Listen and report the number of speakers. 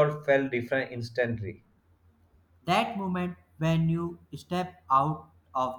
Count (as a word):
two